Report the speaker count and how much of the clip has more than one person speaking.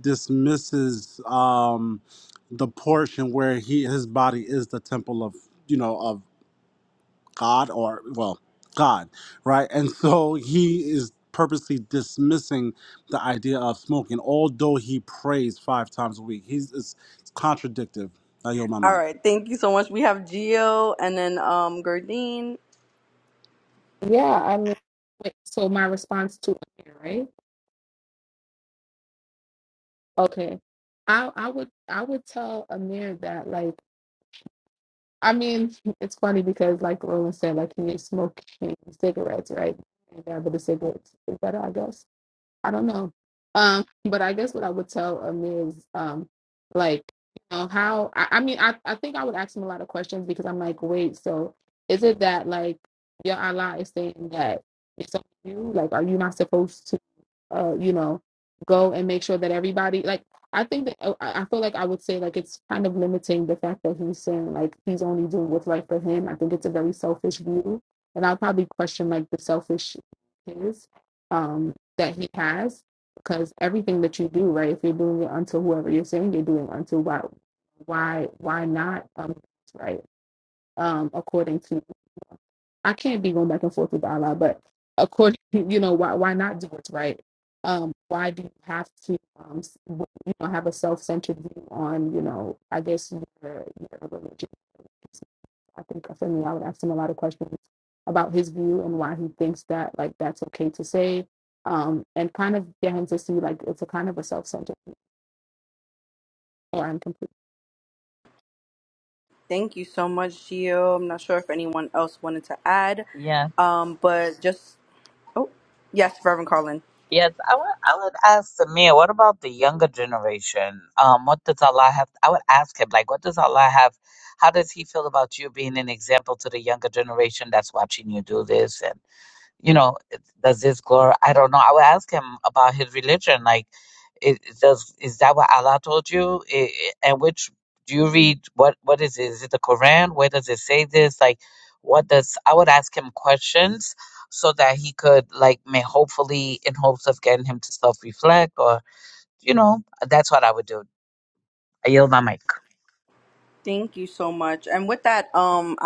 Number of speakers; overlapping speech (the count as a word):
four, under 1%